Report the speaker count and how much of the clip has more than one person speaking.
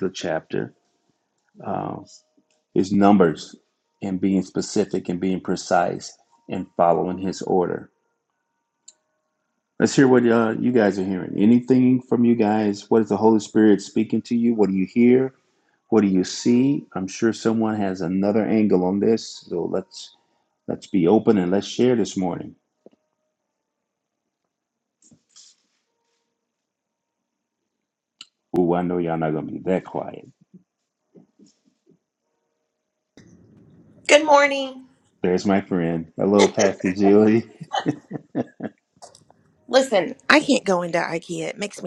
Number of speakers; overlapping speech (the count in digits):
2, no overlap